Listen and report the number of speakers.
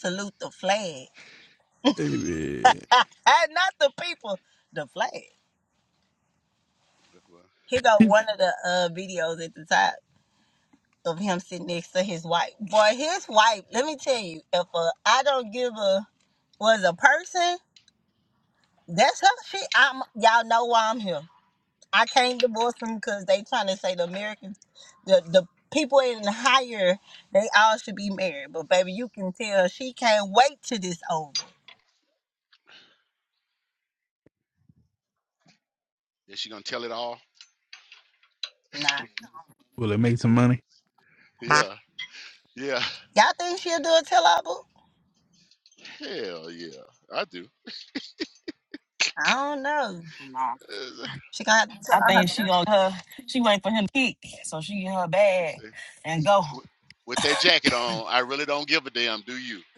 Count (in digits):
4